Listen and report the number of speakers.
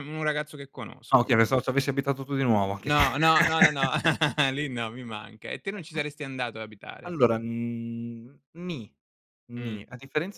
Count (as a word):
two